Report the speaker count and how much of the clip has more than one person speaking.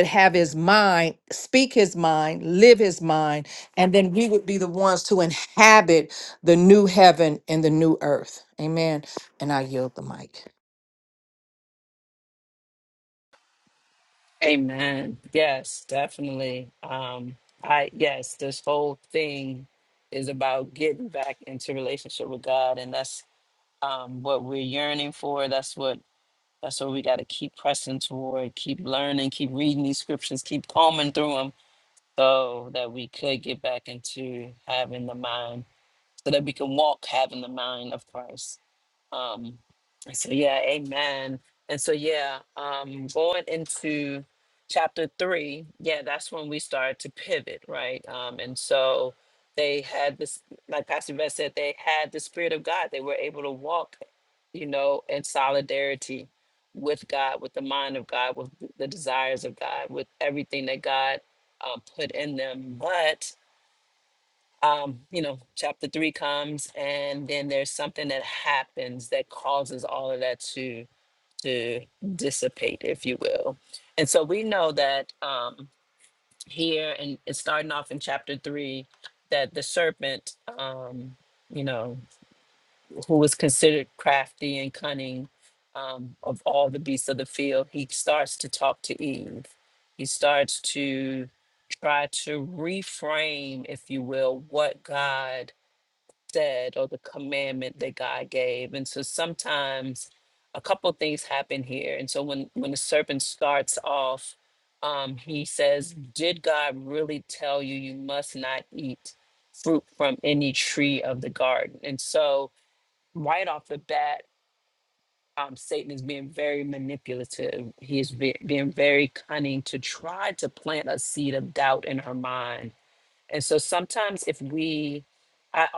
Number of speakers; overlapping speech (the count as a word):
two, no overlap